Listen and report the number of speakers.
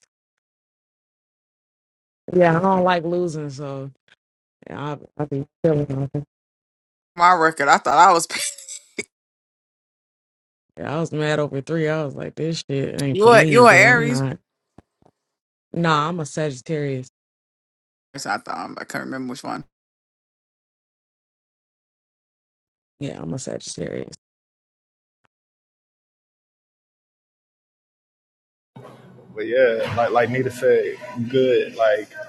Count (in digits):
3